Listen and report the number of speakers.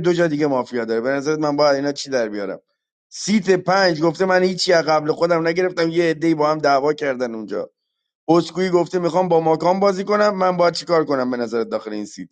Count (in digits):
1